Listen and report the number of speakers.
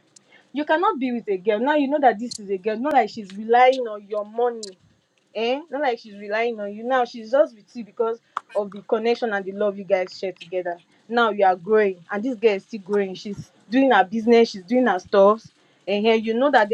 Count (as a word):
one